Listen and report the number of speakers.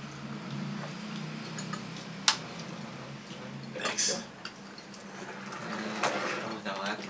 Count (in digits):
1